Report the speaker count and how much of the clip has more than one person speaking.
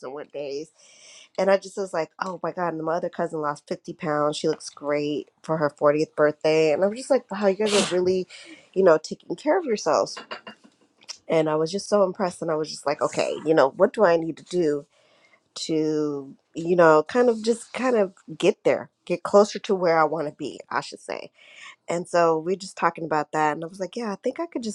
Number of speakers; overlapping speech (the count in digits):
1, no overlap